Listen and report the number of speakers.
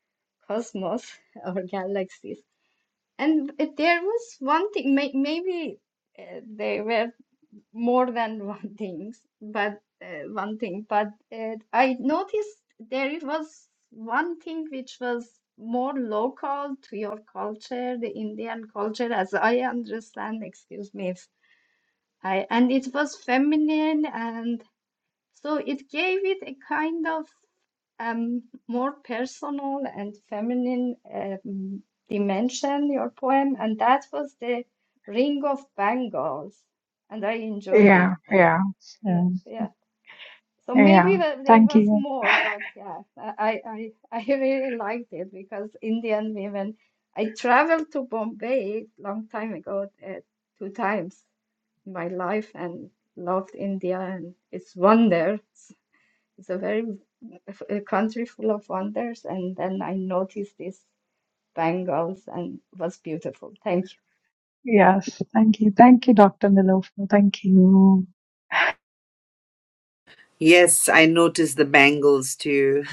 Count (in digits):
3